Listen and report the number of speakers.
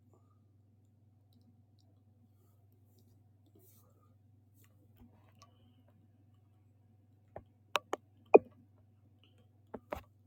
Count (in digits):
0